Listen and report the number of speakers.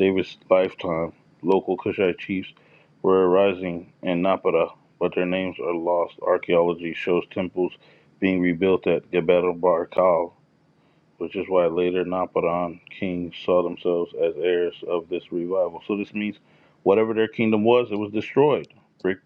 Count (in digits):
1